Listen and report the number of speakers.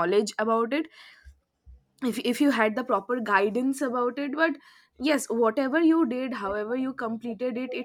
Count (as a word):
one